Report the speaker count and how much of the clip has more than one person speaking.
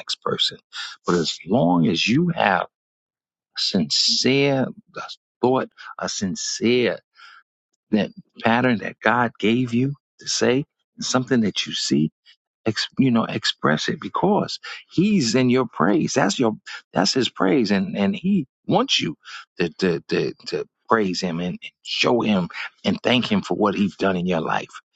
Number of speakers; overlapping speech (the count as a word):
one, no overlap